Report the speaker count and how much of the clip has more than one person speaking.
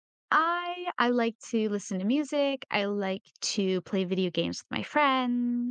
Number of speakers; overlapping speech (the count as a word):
one, no overlap